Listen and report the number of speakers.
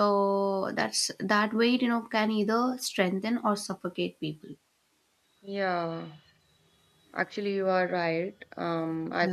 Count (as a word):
two